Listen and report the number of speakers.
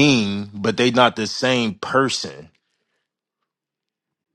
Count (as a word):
one